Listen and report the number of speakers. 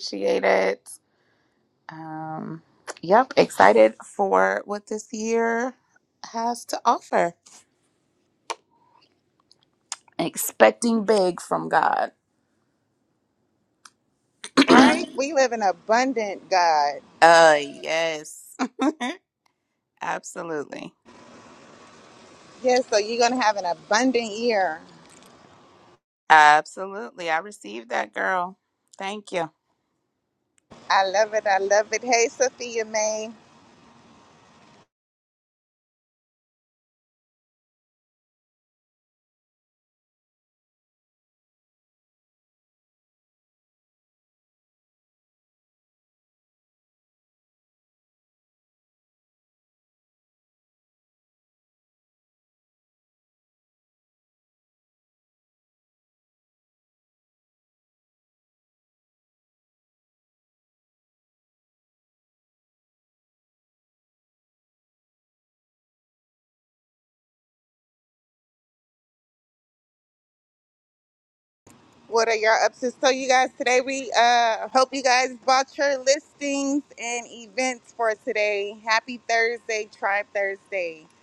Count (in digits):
2